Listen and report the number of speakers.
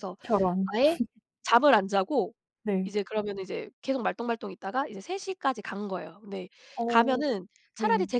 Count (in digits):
2